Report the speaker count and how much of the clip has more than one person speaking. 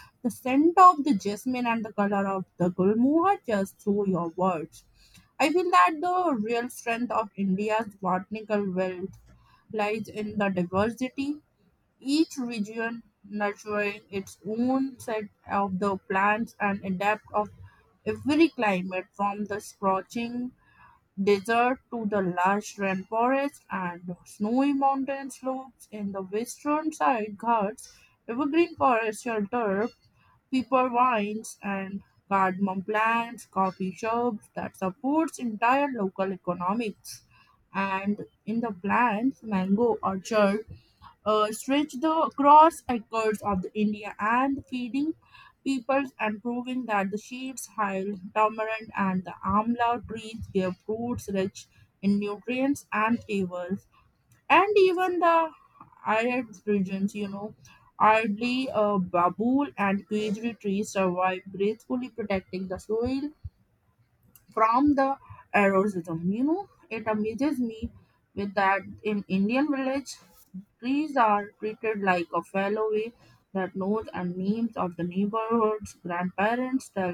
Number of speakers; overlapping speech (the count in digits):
1, no overlap